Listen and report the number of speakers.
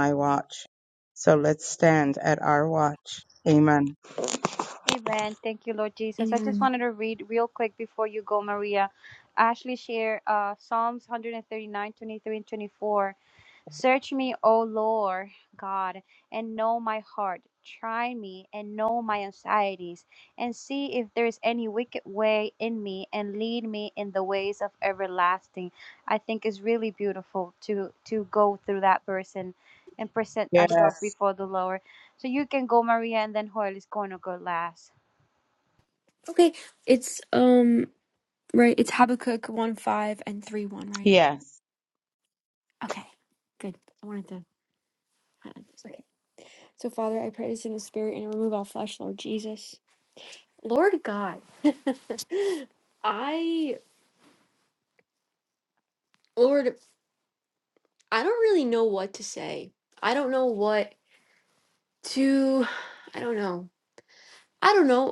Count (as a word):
three